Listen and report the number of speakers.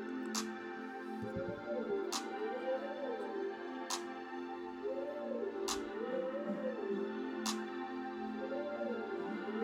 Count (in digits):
0